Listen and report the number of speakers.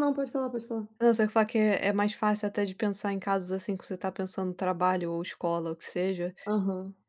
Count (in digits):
2